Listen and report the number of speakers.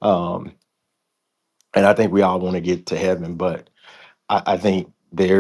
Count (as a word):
one